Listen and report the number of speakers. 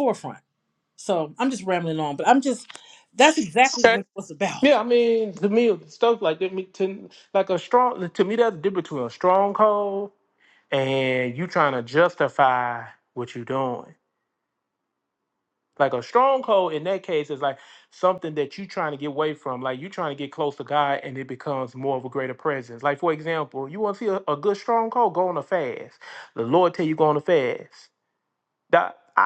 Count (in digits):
2